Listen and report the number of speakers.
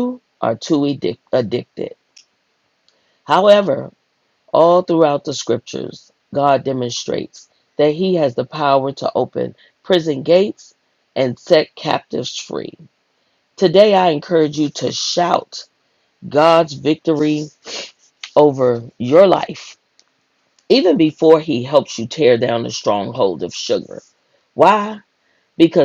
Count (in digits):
1